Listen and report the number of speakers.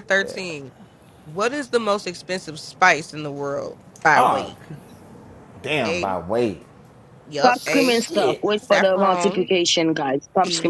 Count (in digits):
3